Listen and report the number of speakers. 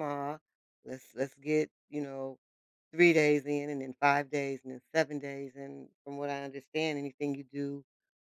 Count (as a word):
one